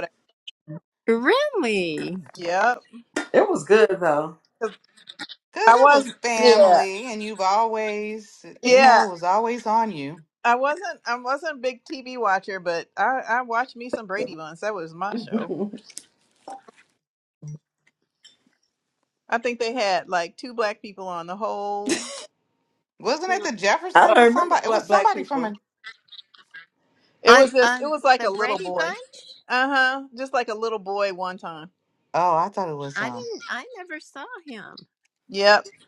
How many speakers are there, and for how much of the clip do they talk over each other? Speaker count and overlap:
4, about 15%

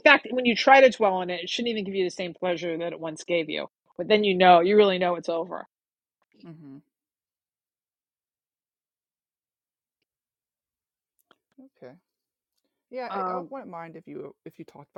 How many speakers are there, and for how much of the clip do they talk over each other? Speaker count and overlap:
2, about 3%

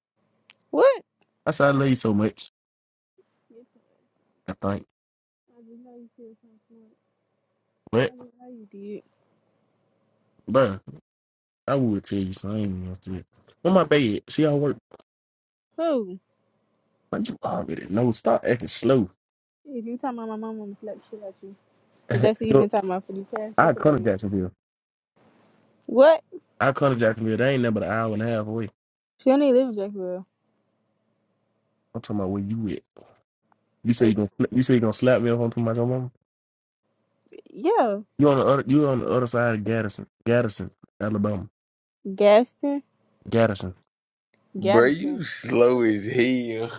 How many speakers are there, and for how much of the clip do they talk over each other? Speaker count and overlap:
3, about 4%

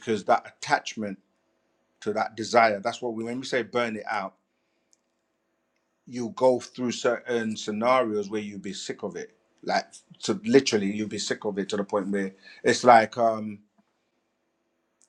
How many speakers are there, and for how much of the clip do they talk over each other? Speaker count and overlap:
1, no overlap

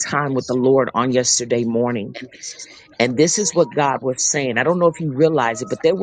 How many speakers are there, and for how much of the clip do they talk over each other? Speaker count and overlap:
1, no overlap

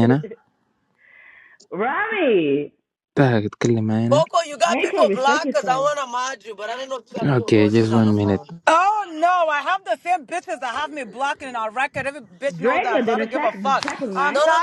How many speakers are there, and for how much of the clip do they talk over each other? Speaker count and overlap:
4, about 30%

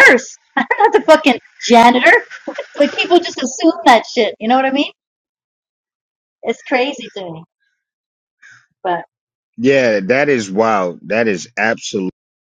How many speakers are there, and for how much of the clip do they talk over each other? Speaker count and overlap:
2, no overlap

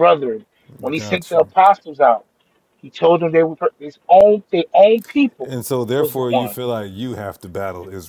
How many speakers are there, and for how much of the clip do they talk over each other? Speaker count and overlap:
2, about 14%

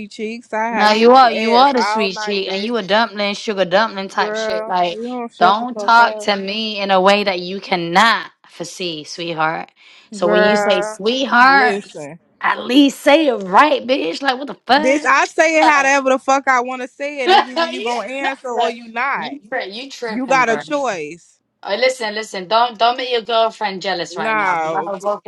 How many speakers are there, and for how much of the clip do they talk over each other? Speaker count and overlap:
2, about 32%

